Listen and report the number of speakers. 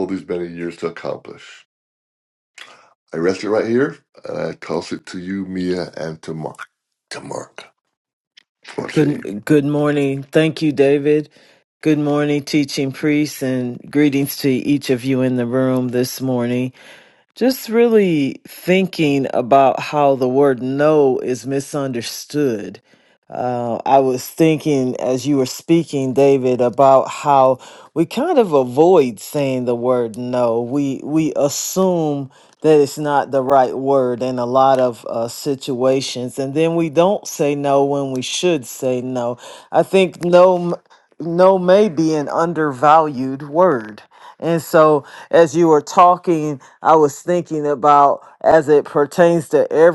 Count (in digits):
2